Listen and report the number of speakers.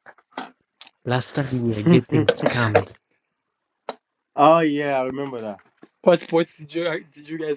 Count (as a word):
three